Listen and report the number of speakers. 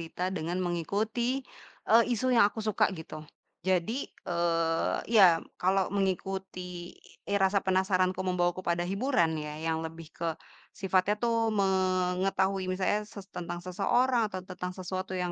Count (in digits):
1